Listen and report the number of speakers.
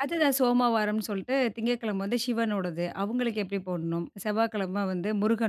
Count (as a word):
one